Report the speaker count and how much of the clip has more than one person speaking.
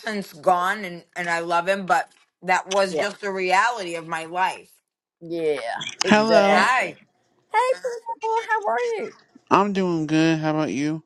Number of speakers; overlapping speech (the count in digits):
3, about 10%